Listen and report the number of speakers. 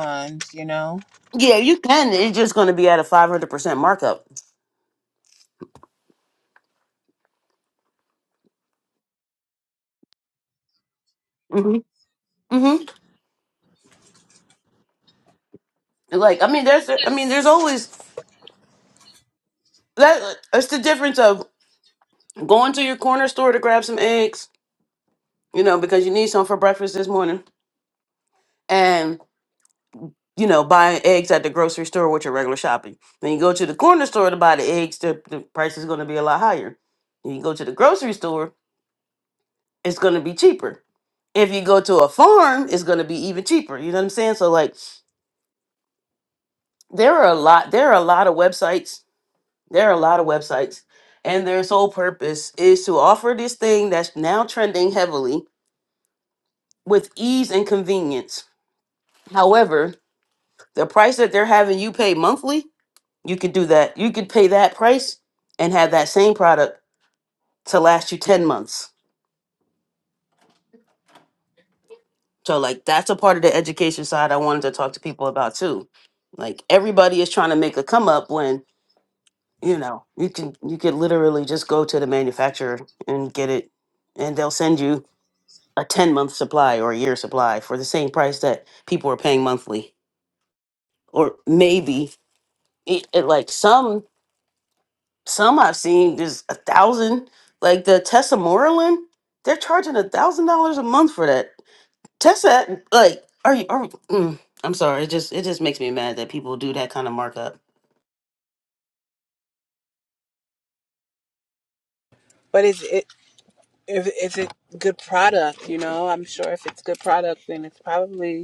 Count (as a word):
two